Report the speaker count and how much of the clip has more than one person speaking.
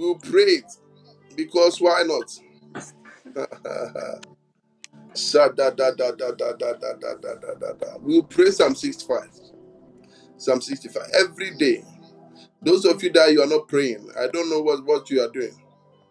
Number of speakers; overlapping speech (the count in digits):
1, no overlap